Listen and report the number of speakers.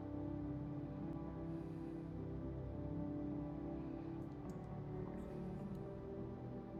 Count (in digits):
0